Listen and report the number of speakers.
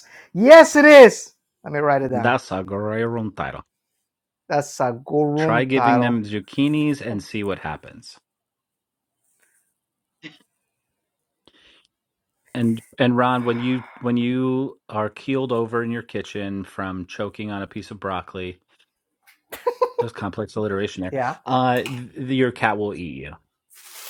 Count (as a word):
two